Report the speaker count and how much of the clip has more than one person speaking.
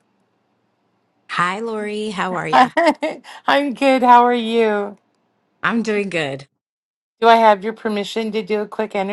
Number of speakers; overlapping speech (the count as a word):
two, about 2%